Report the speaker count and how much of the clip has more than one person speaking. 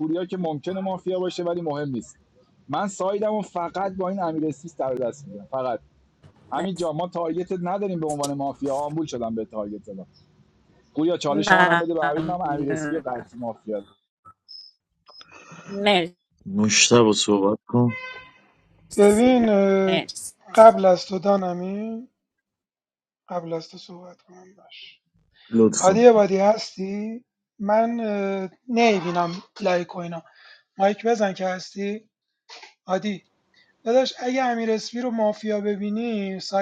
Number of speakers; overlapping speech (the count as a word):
four, about 4%